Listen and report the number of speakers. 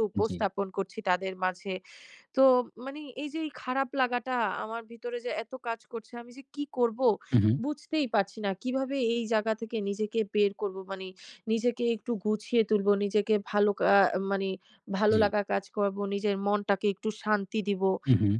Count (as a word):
two